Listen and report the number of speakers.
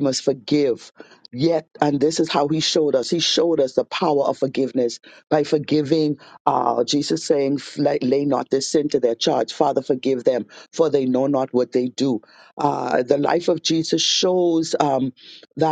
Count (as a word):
one